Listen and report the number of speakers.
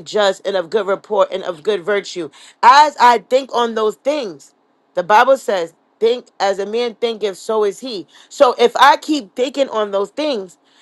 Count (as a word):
one